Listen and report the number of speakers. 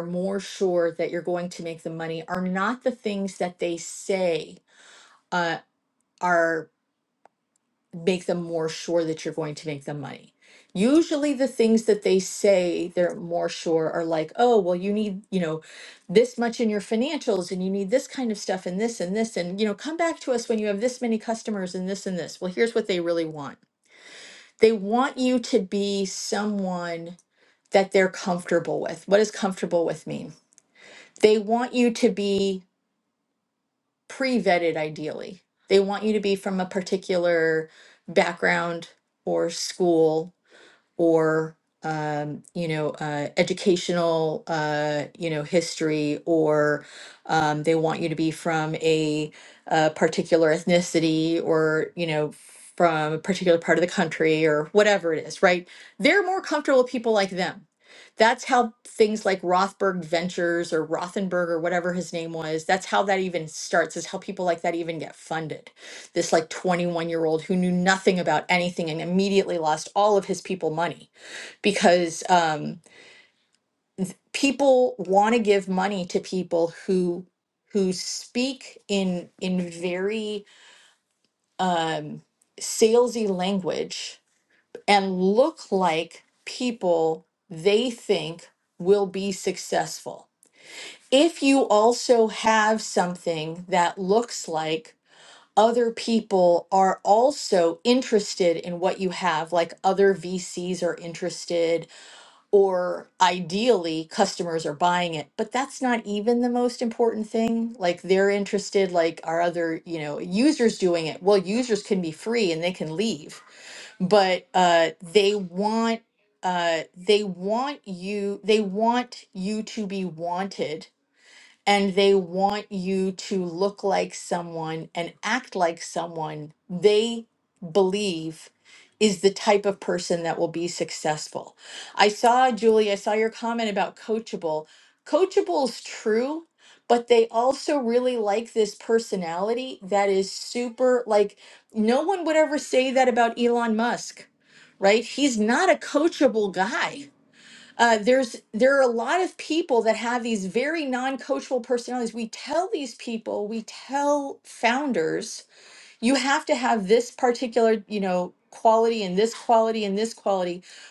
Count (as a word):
one